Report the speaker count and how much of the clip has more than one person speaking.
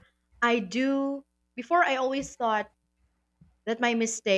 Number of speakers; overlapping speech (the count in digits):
1, no overlap